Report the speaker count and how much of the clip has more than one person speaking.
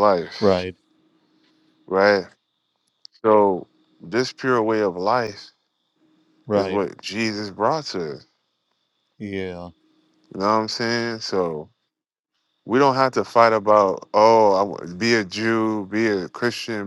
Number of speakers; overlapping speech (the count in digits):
2, about 3%